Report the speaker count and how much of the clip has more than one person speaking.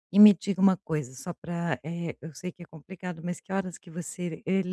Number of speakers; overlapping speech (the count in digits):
1, no overlap